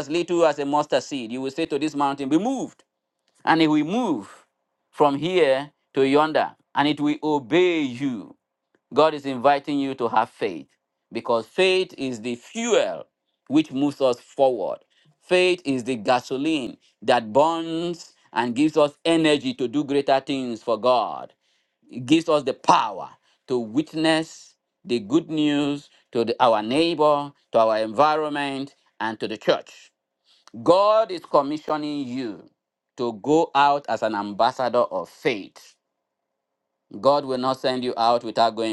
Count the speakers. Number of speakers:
1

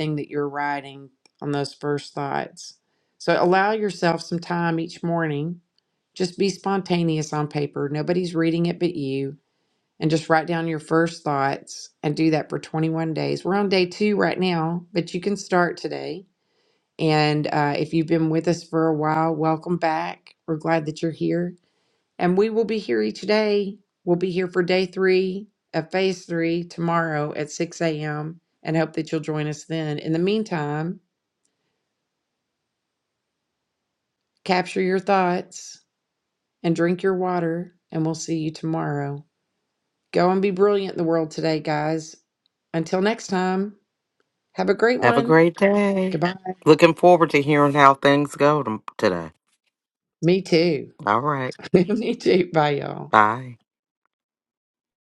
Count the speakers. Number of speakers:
2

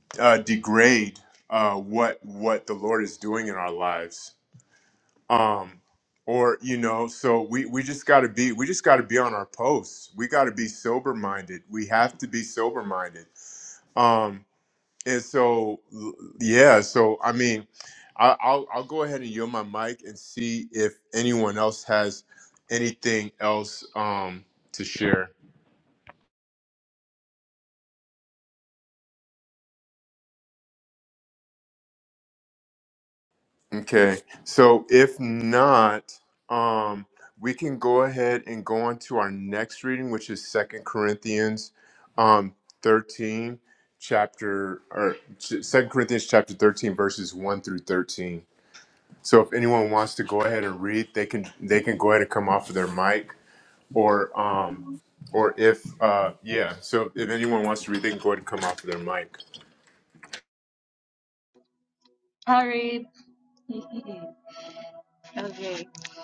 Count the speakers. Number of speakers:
2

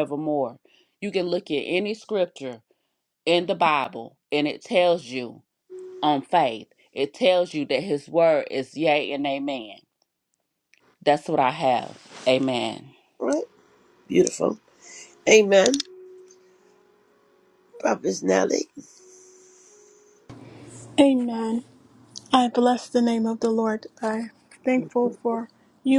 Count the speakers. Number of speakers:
3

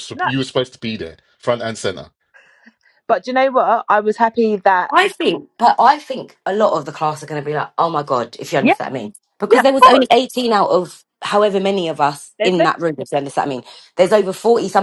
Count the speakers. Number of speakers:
3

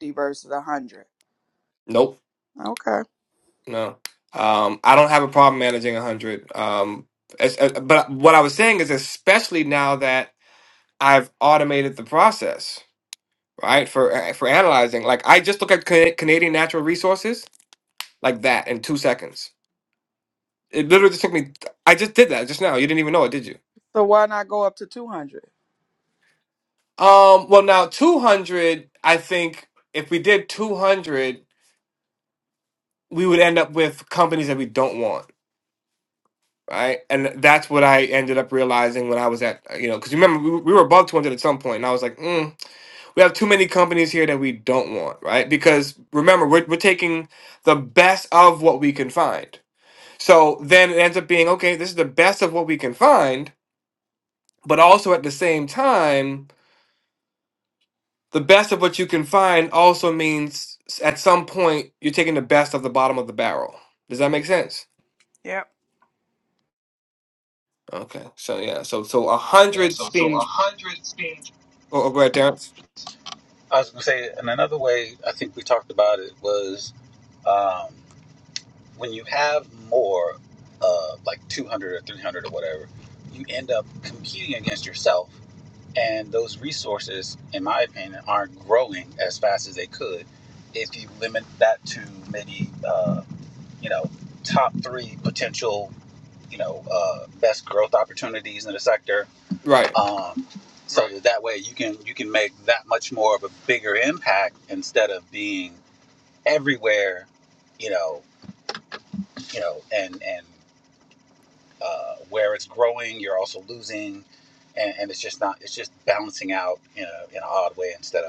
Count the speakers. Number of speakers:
3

